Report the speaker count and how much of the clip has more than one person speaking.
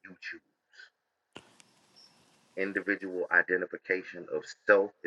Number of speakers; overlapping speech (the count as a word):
one, no overlap